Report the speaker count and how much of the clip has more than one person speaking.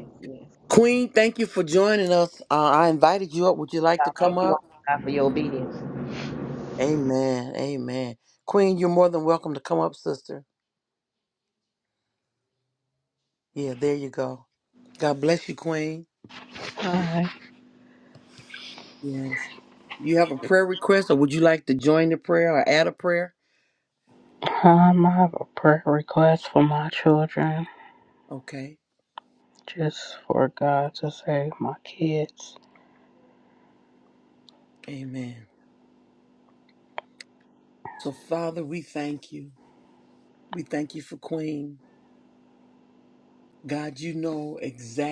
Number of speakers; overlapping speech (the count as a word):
three, about 1%